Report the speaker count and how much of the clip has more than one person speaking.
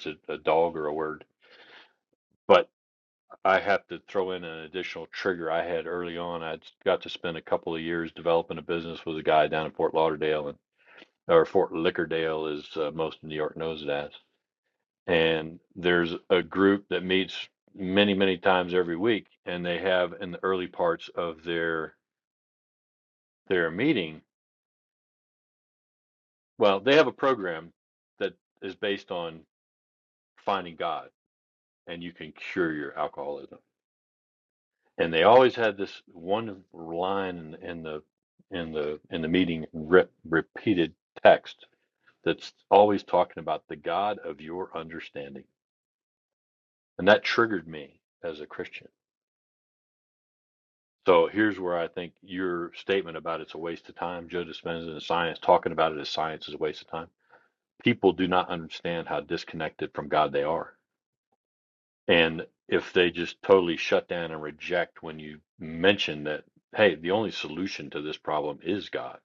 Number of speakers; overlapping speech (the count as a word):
one, no overlap